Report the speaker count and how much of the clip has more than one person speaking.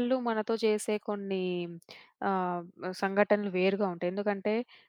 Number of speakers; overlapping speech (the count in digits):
1, no overlap